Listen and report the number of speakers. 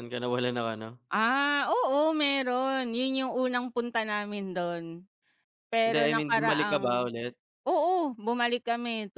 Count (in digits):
2